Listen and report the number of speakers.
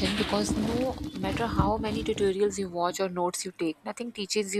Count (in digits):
1